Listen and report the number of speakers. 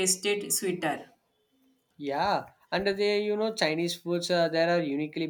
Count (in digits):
2